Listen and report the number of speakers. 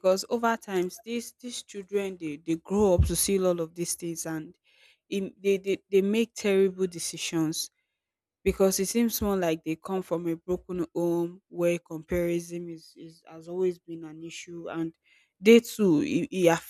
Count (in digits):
1